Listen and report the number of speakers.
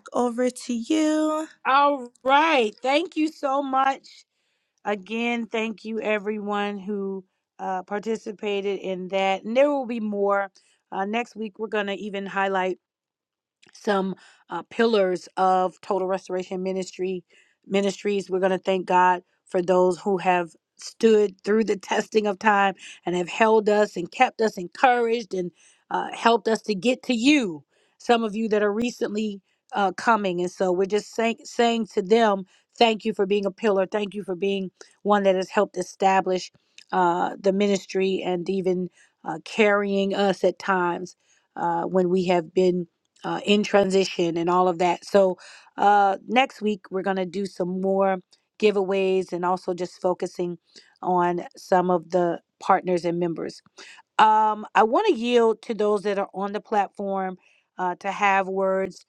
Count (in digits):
2